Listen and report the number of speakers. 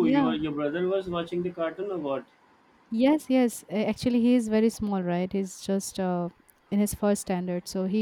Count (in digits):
2